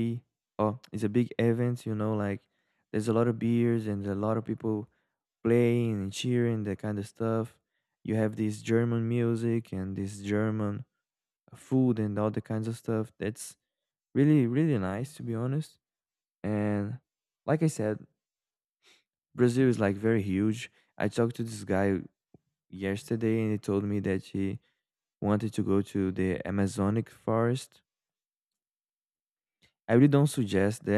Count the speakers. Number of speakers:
one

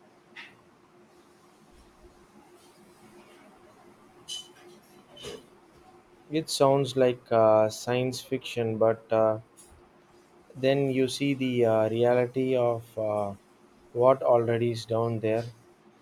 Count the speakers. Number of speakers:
one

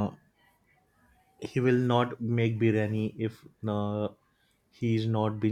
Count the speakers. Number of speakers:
one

